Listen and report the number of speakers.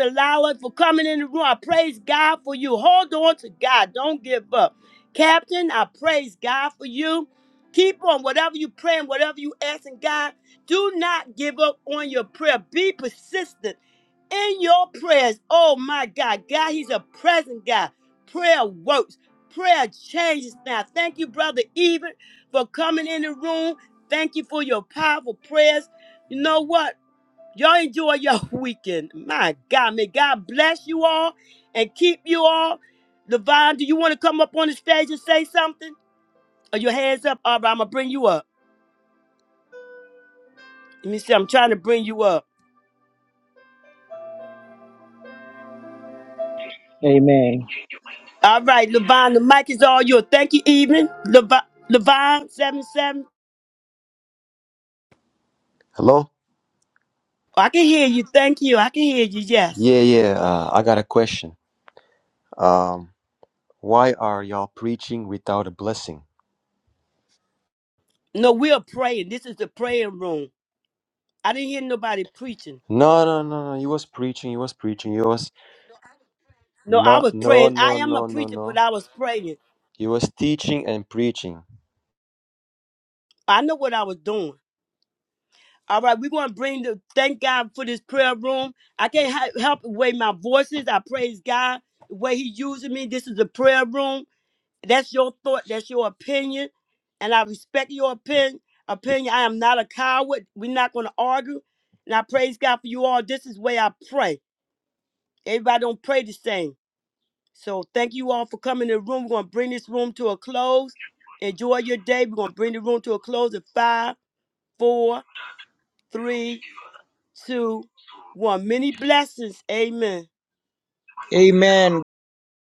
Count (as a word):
three